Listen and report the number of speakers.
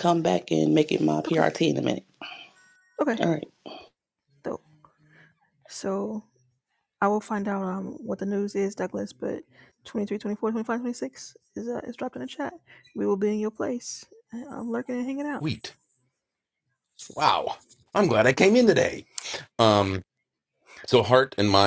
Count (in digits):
3